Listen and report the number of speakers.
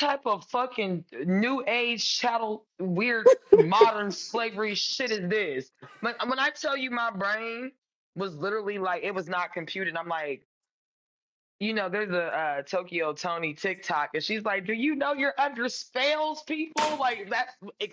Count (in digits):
1